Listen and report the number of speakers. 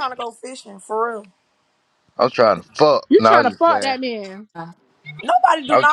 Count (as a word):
three